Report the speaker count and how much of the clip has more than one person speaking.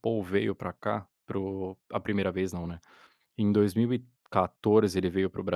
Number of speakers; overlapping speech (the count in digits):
1, no overlap